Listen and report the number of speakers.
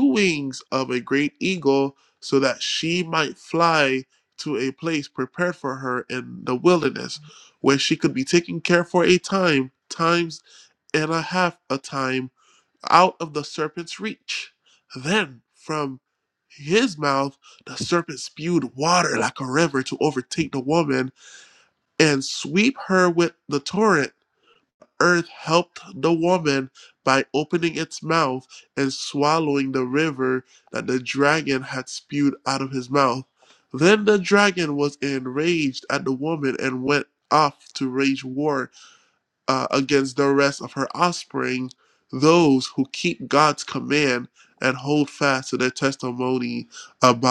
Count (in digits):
1